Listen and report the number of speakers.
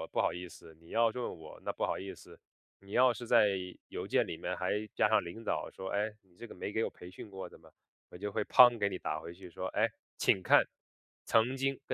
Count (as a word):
one